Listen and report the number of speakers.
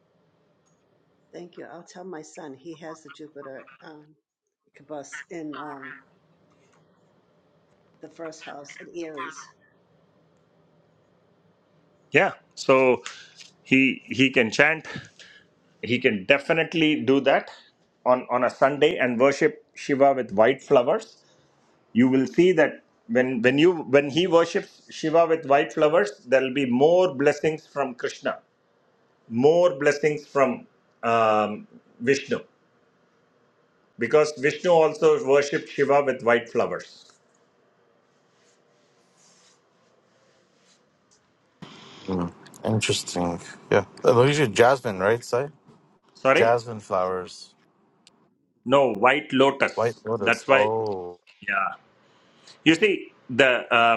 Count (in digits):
3